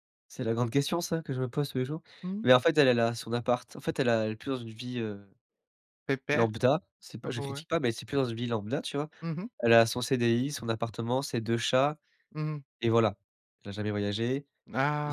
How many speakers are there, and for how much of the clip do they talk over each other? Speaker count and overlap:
two, about 3%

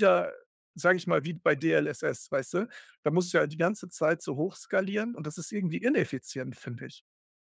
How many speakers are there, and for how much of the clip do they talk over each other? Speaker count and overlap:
one, no overlap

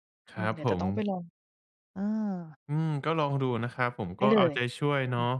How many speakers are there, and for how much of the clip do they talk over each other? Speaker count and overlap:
two, about 17%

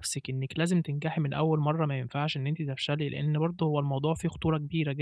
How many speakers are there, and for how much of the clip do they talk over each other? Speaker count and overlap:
one, no overlap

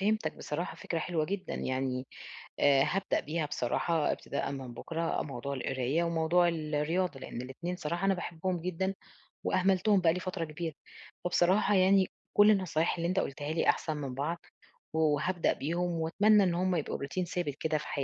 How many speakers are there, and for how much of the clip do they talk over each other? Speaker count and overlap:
one, no overlap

